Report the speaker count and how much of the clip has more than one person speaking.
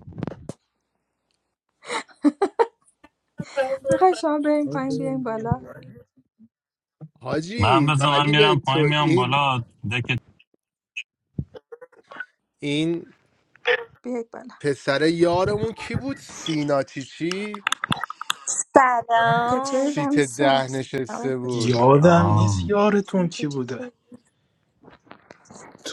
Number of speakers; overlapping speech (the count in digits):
5, about 18%